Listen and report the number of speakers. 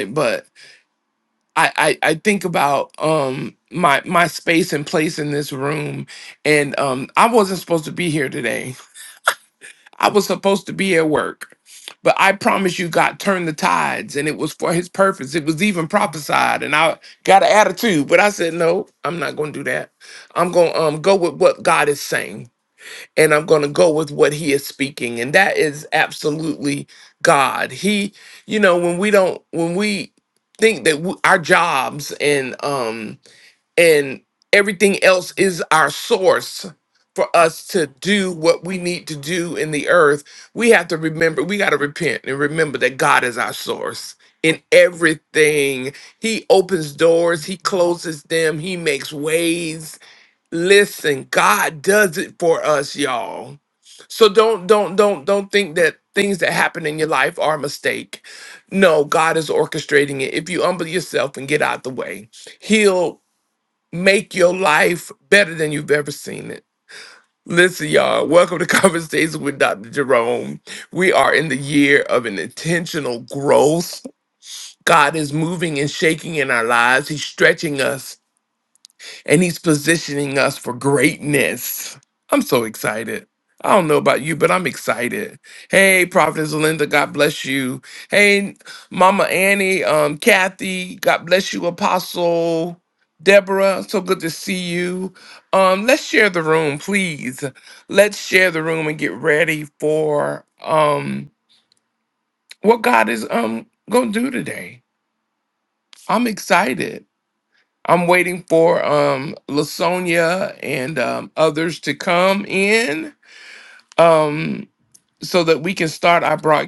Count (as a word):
one